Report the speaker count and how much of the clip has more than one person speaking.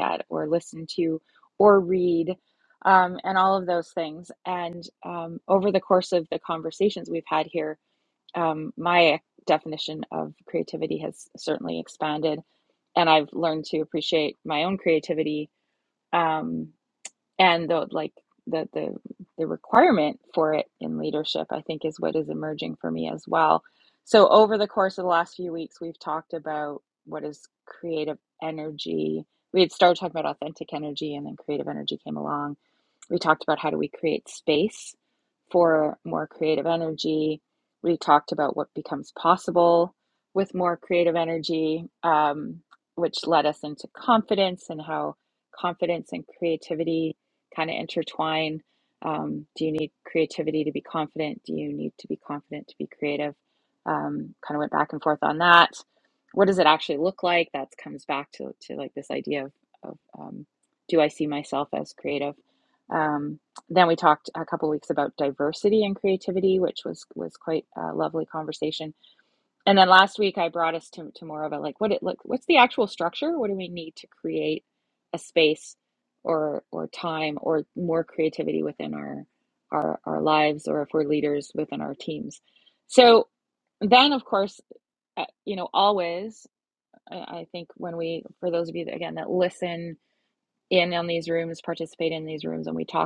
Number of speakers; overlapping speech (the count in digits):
1, no overlap